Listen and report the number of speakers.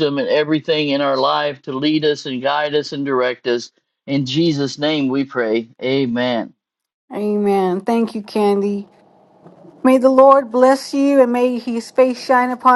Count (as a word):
two